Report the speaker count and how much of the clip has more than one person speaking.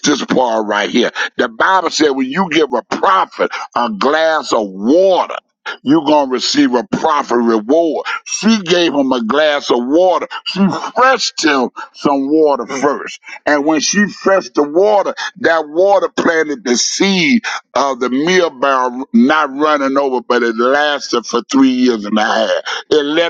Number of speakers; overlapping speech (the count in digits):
1, no overlap